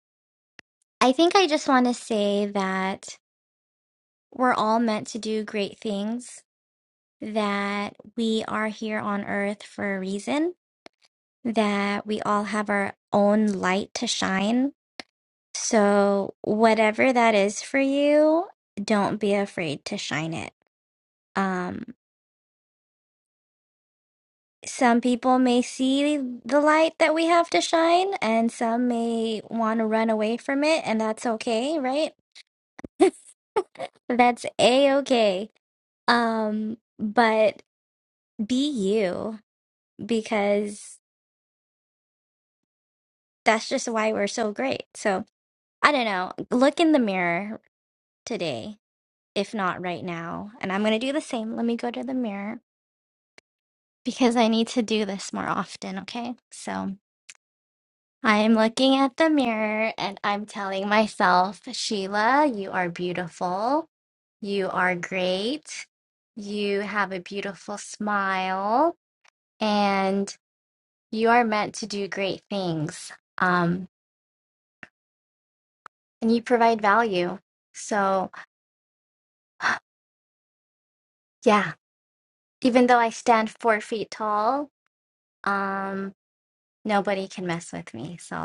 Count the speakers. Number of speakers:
one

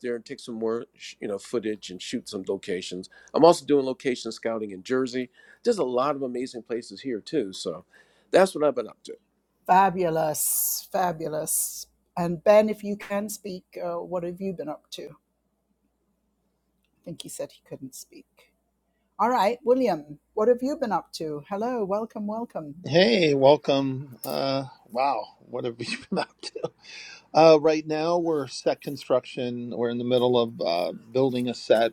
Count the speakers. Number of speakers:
three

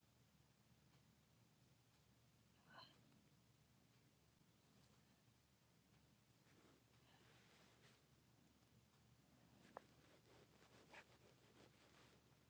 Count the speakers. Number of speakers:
zero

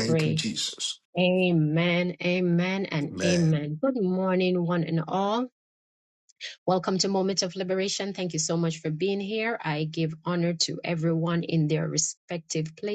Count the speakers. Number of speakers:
two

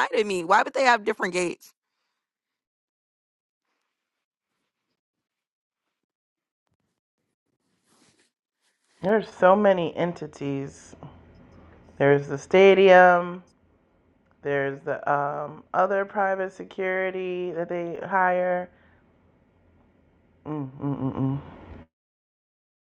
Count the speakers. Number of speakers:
two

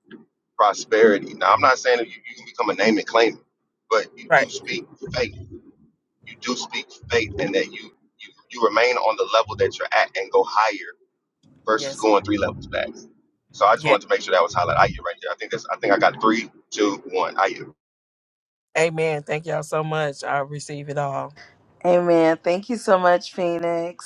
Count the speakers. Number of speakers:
three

